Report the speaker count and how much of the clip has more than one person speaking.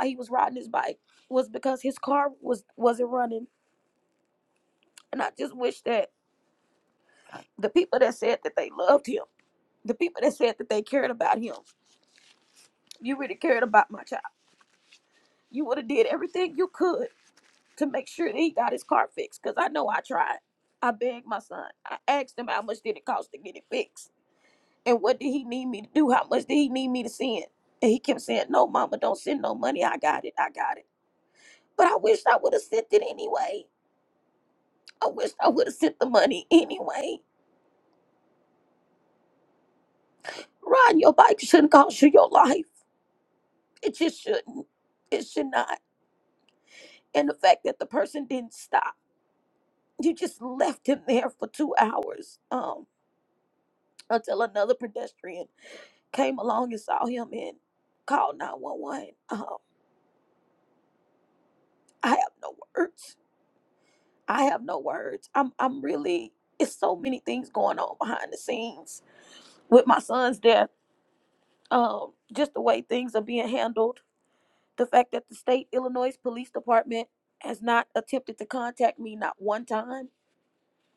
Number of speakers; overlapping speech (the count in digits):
1, no overlap